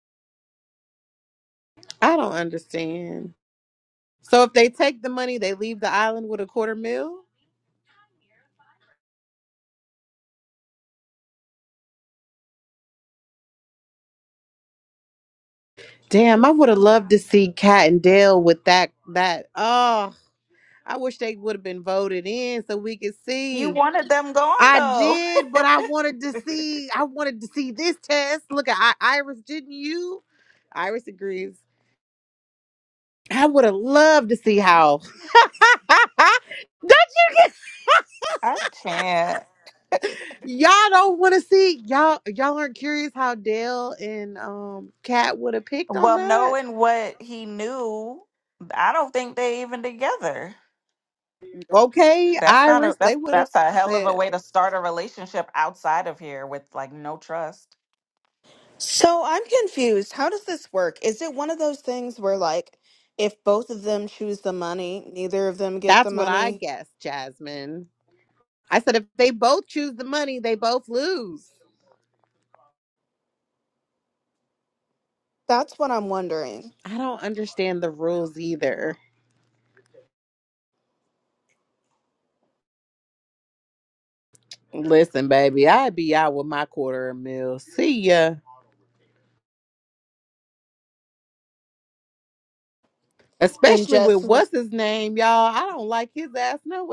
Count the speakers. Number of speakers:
3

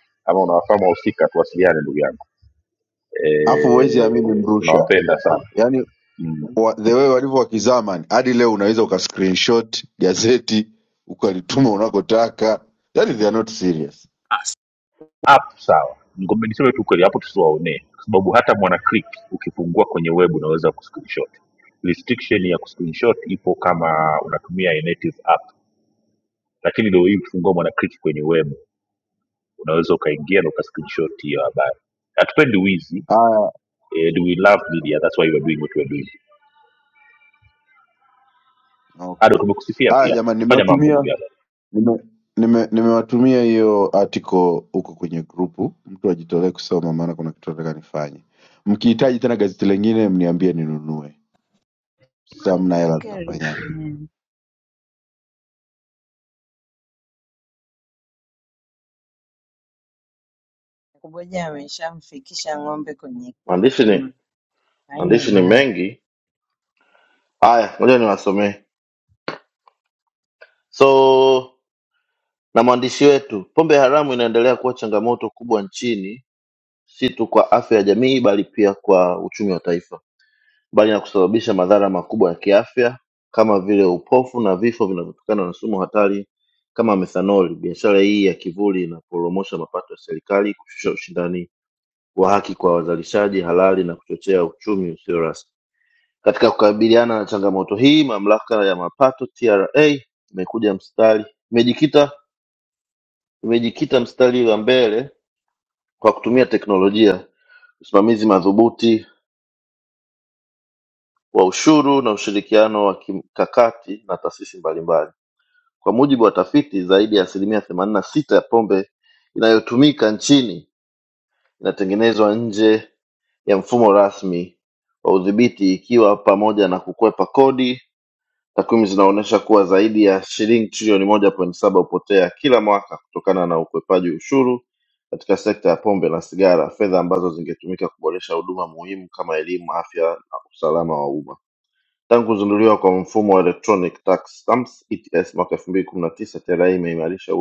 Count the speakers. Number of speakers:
4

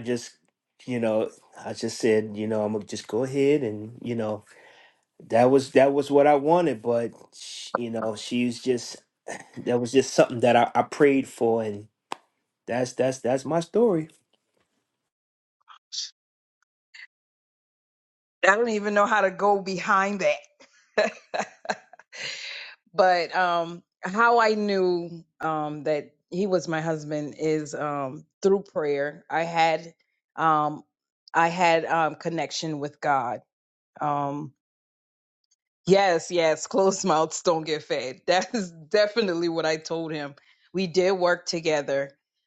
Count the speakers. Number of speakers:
2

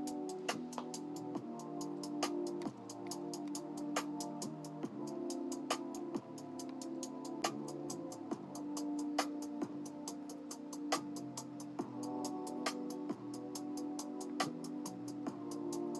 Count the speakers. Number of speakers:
0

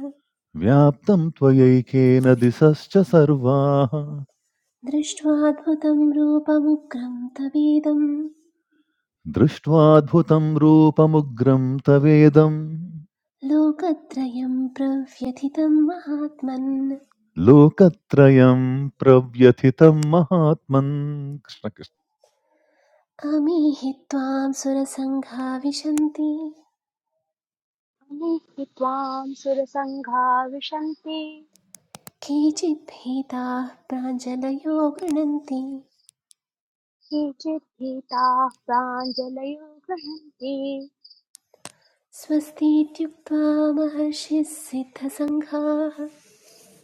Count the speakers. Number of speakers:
3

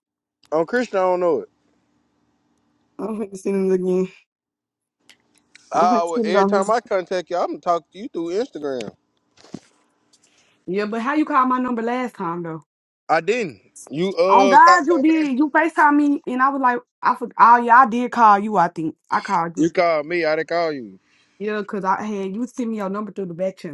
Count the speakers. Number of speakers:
2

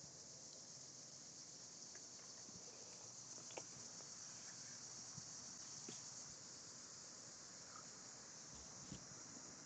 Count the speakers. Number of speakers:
0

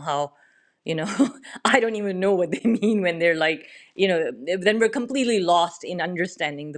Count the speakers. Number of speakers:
1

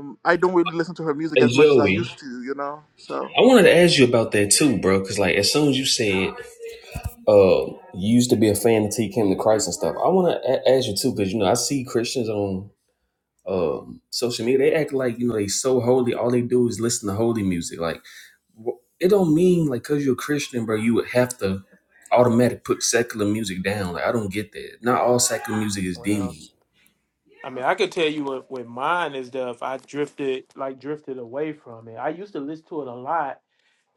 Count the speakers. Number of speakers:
3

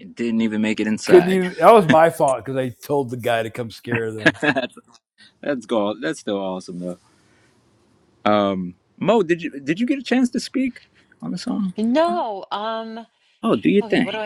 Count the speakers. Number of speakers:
3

